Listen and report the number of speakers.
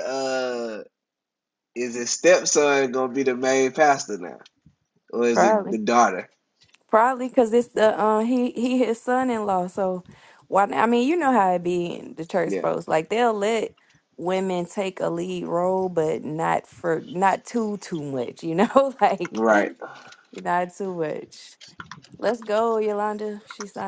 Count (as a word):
two